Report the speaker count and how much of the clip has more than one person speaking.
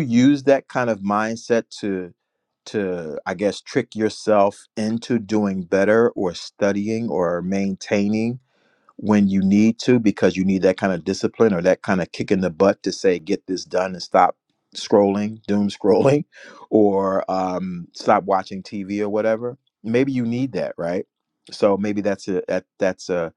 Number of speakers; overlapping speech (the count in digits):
1, no overlap